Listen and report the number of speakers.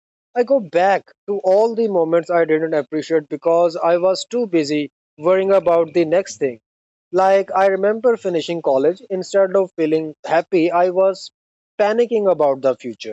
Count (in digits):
1